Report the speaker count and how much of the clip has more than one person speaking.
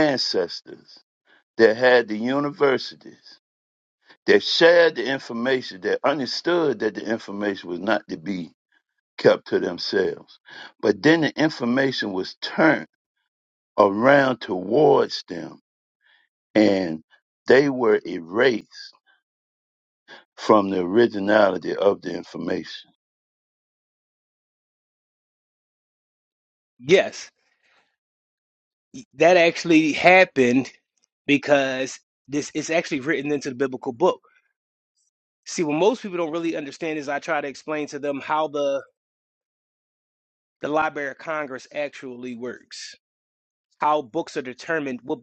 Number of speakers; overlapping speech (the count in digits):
2, no overlap